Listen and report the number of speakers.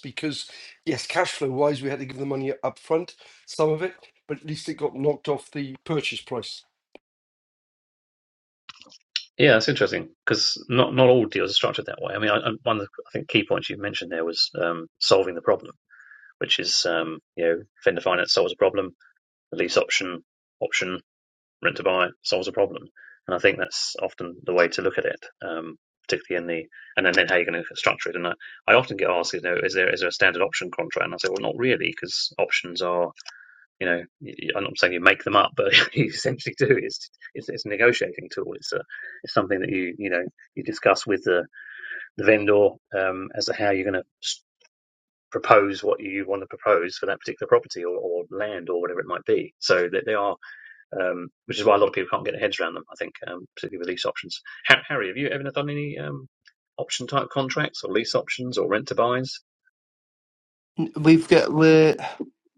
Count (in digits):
3